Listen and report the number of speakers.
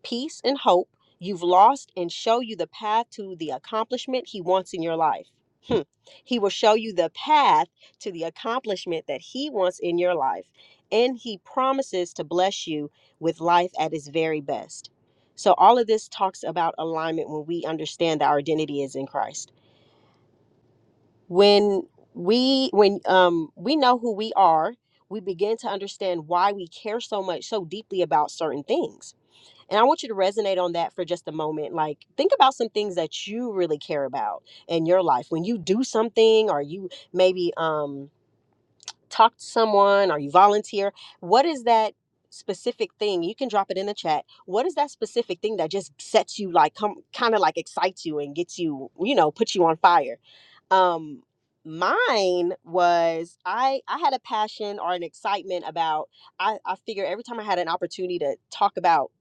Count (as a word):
one